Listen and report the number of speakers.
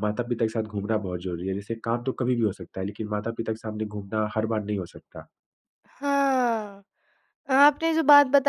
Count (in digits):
2